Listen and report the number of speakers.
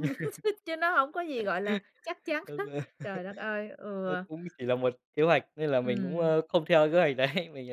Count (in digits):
2